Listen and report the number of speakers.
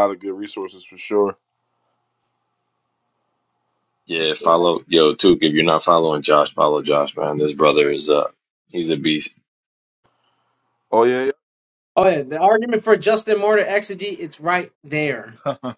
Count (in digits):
3